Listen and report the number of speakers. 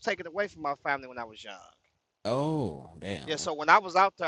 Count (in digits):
2